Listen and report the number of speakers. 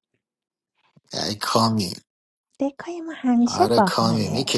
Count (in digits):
2